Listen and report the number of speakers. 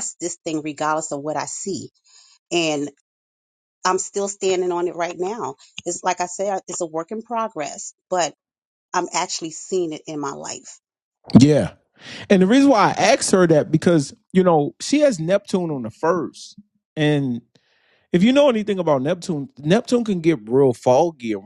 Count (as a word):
two